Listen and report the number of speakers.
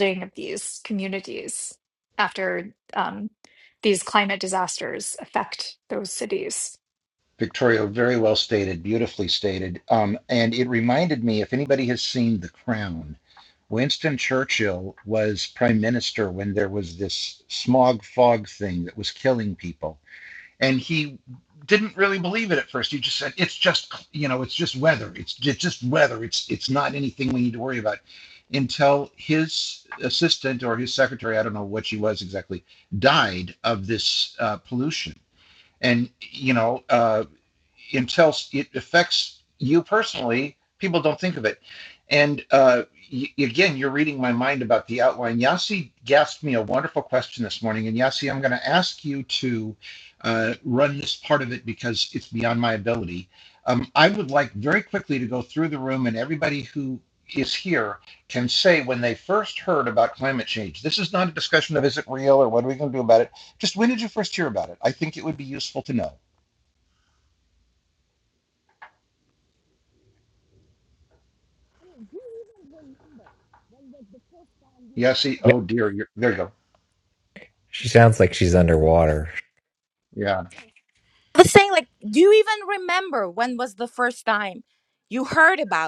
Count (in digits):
4